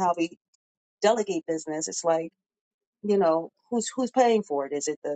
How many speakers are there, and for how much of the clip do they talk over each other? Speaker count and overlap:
one, no overlap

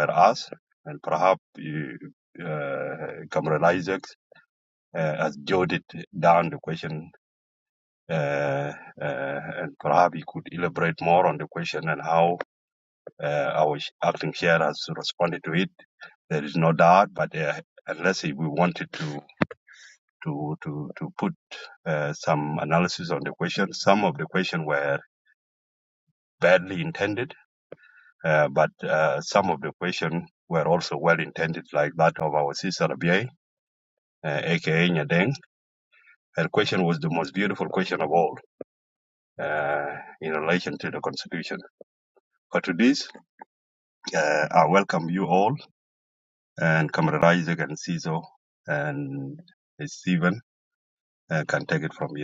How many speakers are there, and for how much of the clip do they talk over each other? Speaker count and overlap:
one, no overlap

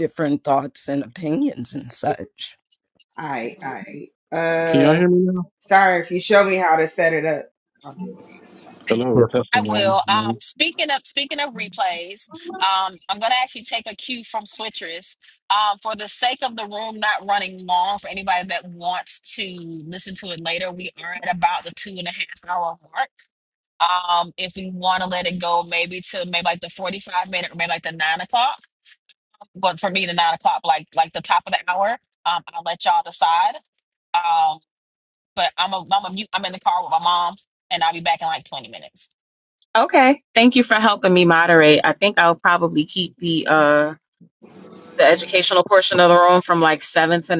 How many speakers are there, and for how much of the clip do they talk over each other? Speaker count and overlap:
five, about 3%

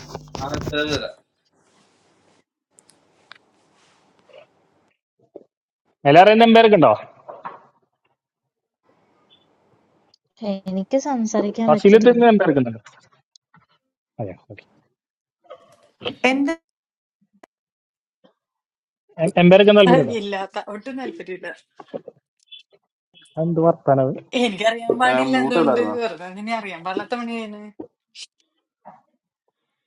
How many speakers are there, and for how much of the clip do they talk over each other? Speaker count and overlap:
four, about 5%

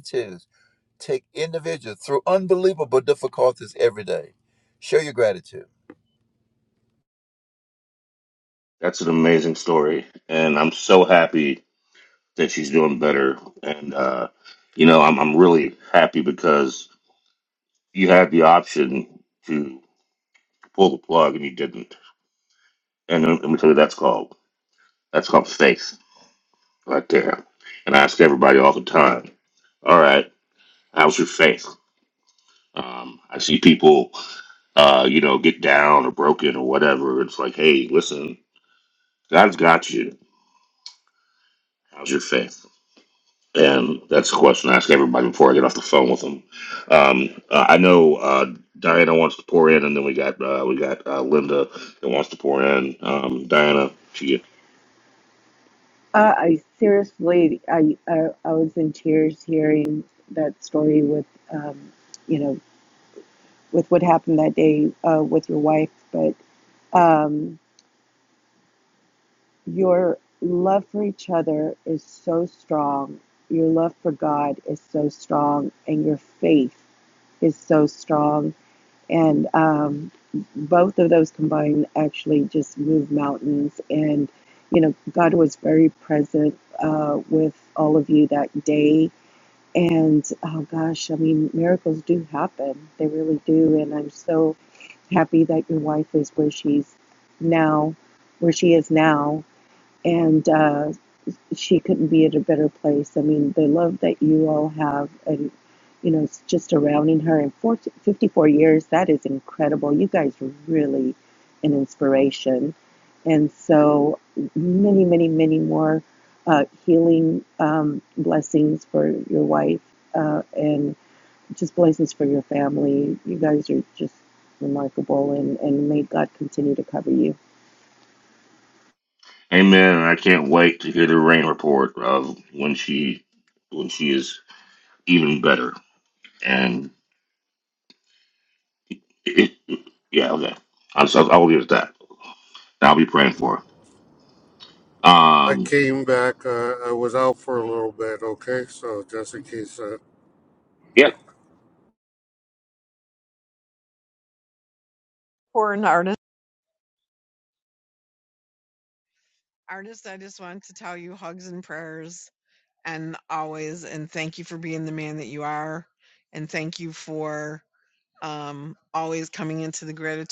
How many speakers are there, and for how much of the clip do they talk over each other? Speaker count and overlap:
five, under 1%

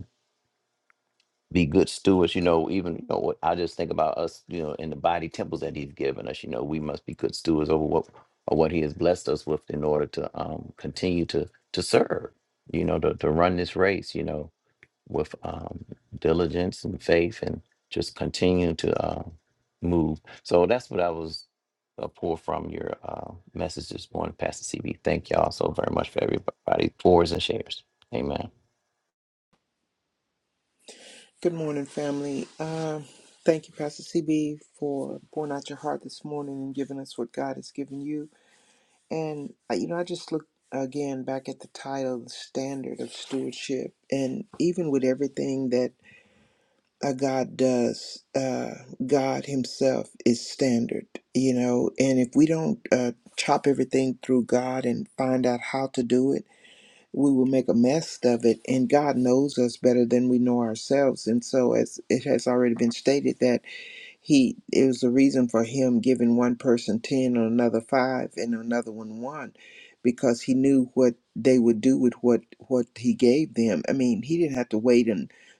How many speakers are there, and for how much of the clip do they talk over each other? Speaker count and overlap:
two, no overlap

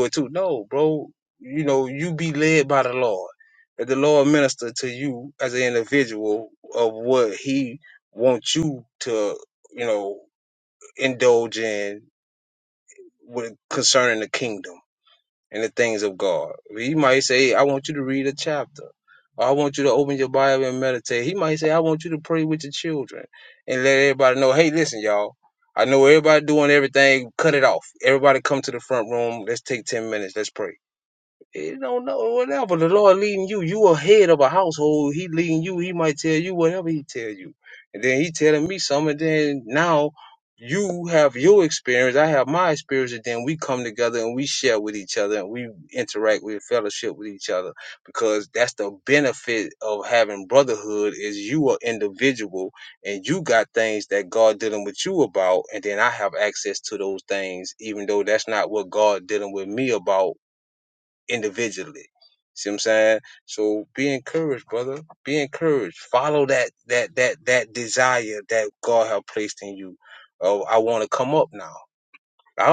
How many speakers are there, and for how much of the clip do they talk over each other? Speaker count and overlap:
one, no overlap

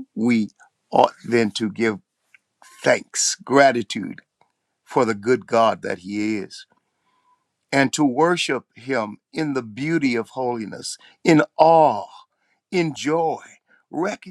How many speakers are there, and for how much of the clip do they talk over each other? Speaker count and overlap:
one, no overlap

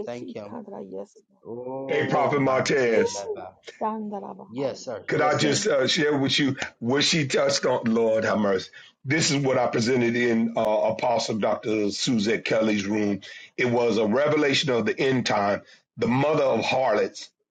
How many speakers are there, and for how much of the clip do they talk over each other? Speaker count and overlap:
three, about 15%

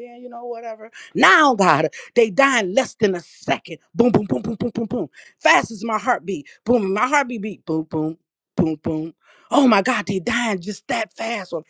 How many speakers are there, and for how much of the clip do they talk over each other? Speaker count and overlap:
one, no overlap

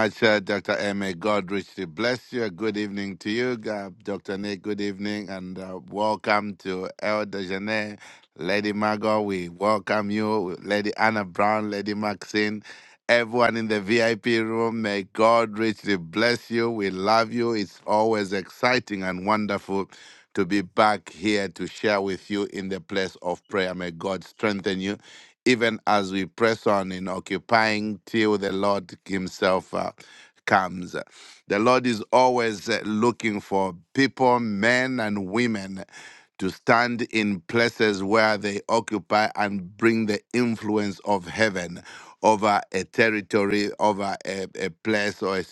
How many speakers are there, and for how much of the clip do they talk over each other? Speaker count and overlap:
one, no overlap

